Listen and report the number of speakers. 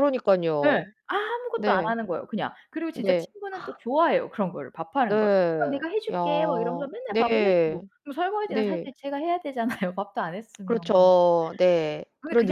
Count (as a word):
two